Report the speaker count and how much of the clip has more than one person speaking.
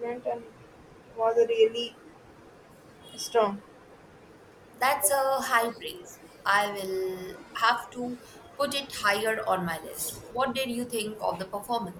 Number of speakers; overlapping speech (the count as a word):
two, no overlap